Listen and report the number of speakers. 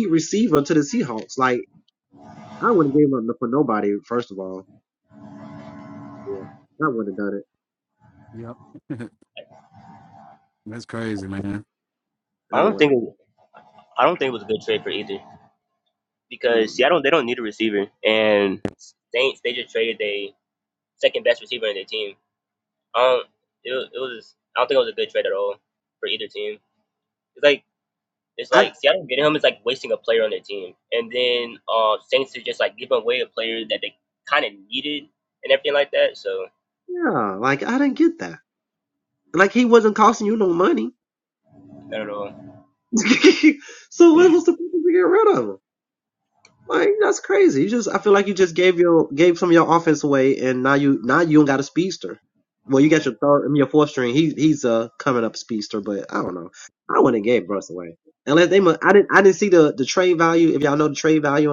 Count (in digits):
3